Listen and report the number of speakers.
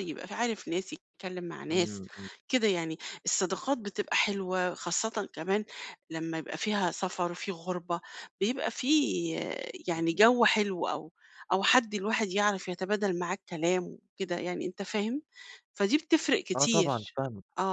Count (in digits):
2